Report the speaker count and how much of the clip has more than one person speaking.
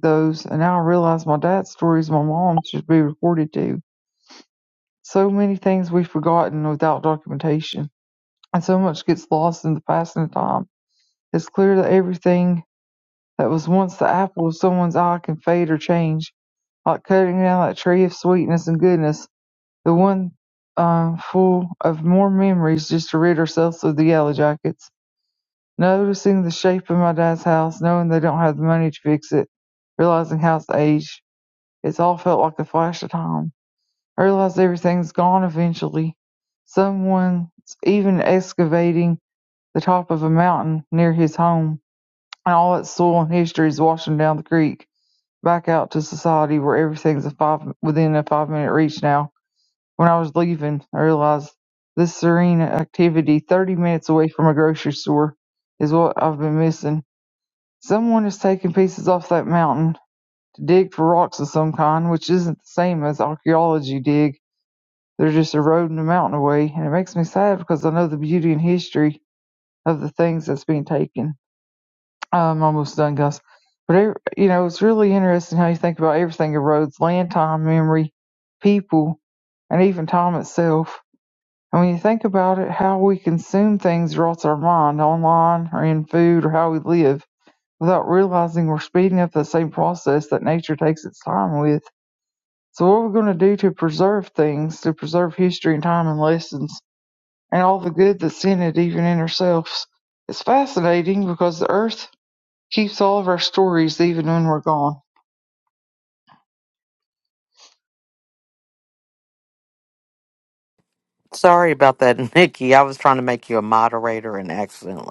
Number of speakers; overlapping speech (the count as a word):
two, no overlap